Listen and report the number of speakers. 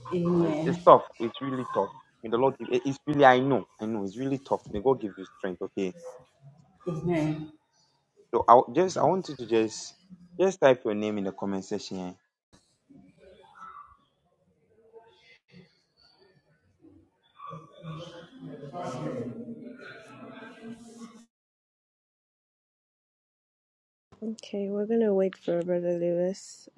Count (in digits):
3